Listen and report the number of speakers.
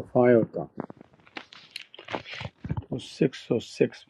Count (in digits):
1